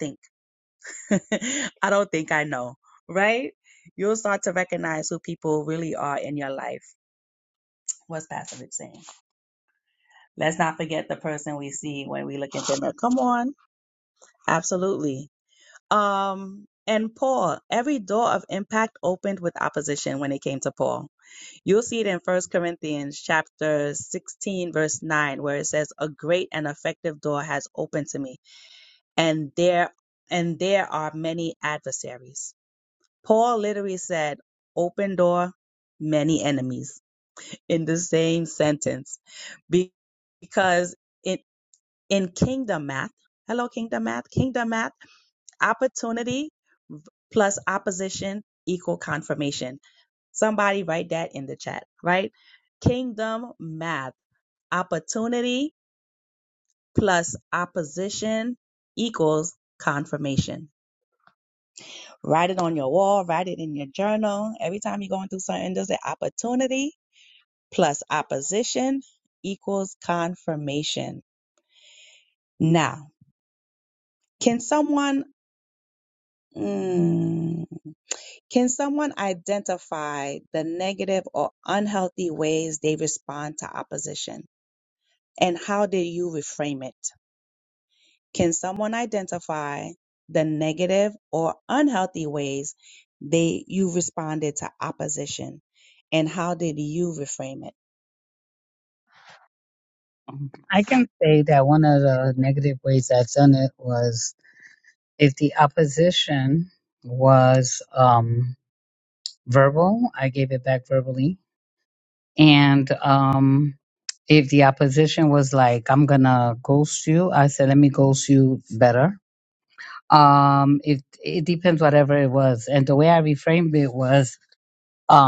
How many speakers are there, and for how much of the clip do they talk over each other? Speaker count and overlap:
2, no overlap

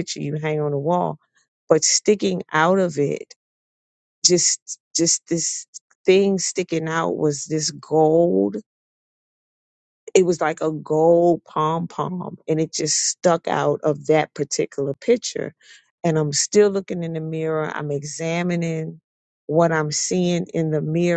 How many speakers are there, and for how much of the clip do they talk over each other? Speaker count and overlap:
1, no overlap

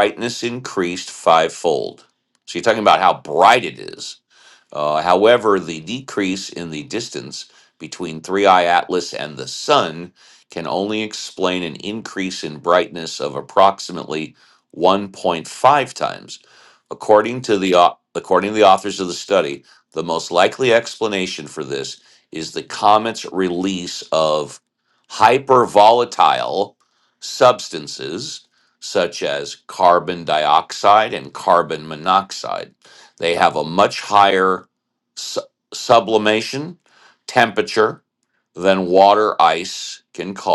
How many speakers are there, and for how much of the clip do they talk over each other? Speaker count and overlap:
1, no overlap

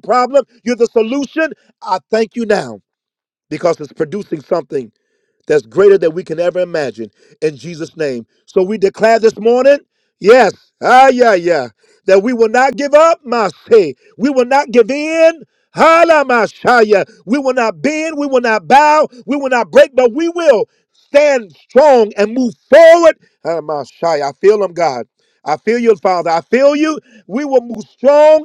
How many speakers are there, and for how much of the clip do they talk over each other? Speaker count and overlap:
1, no overlap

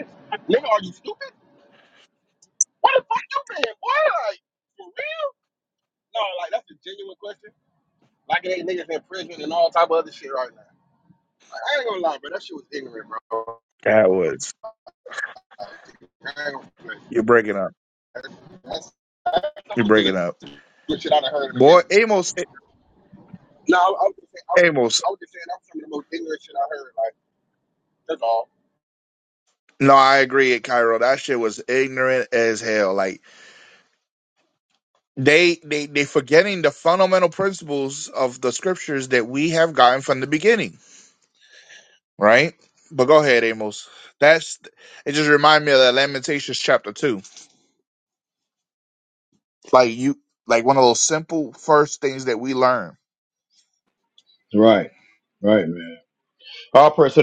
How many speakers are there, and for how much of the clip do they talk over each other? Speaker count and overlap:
3, about 1%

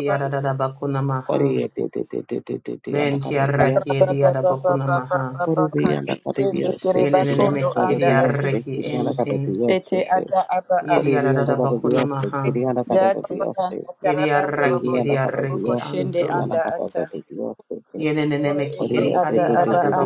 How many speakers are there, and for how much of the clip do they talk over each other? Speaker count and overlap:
3, about 67%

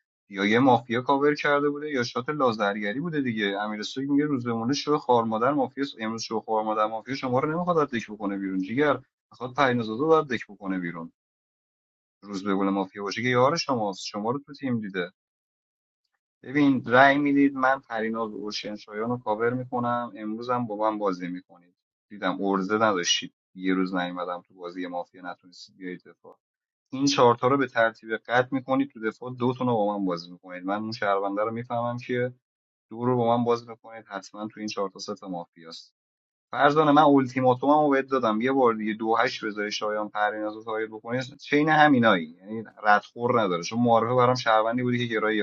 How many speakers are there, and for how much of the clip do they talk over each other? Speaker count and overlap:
1, no overlap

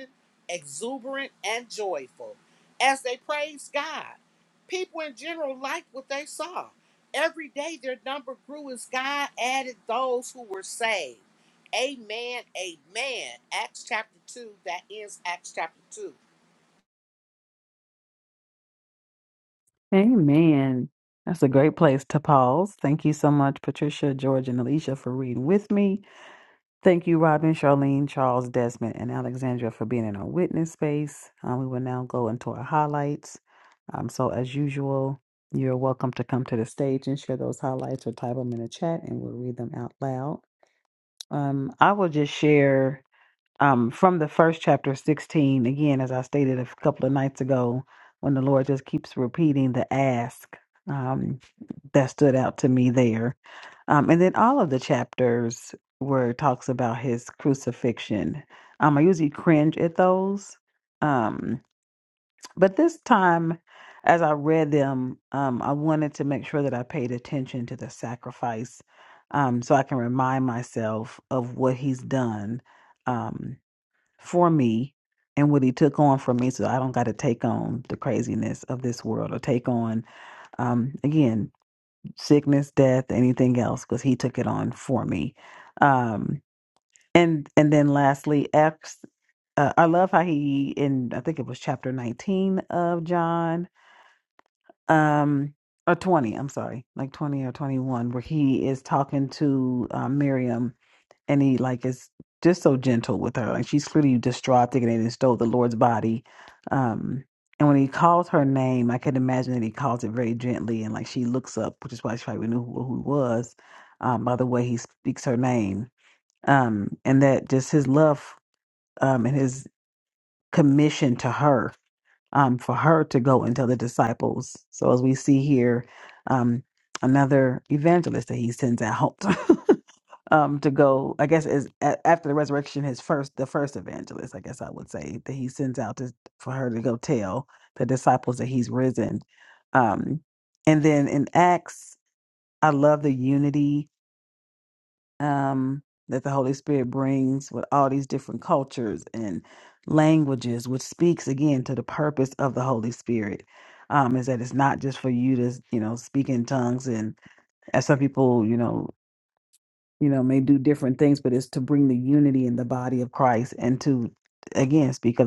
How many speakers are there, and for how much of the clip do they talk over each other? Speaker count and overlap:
2, no overlap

